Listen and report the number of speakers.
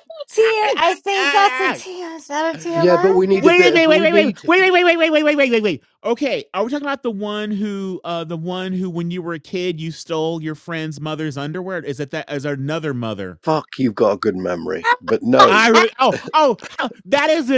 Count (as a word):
three